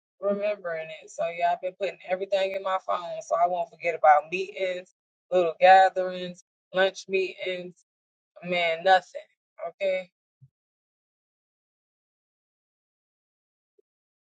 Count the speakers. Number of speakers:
1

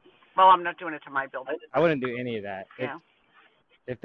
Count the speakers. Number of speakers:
2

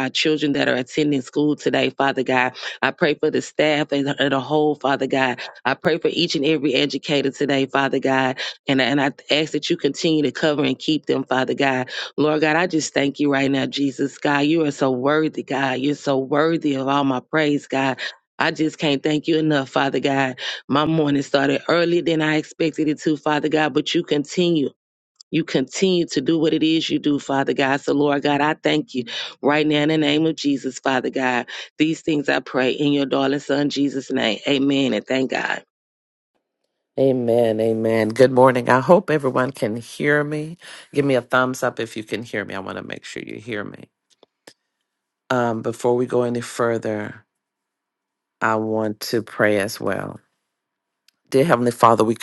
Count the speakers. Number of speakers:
2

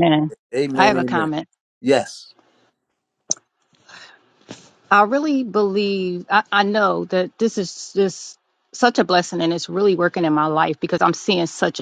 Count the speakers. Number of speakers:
2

